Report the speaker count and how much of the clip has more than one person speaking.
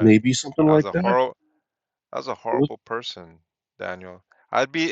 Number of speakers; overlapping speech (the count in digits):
2, about 16%